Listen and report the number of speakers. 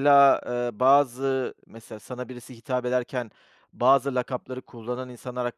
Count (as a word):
one